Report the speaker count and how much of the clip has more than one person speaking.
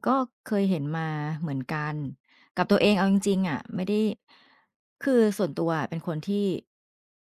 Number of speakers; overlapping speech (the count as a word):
one, no overlap